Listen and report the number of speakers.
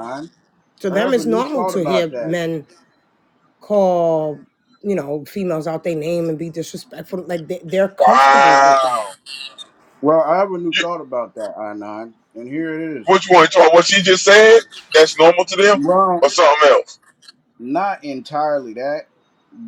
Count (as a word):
three